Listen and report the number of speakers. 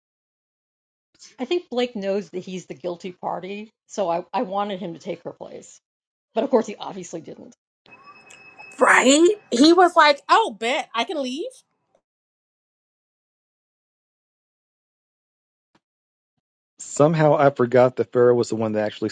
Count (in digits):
3